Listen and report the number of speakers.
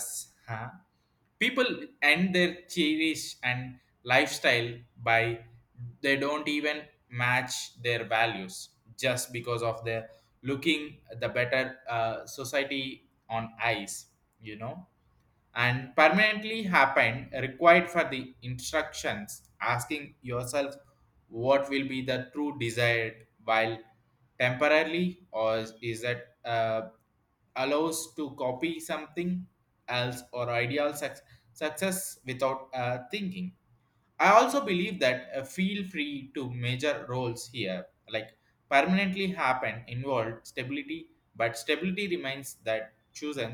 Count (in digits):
1